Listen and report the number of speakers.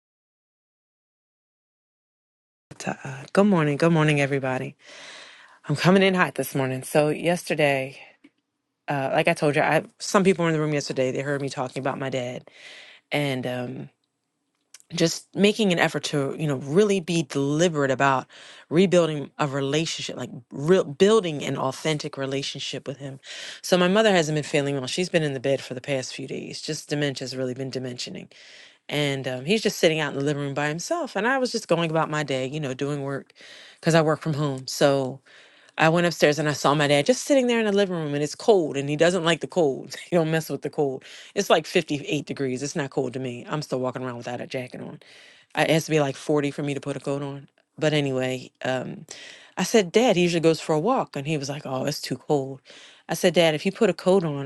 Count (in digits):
1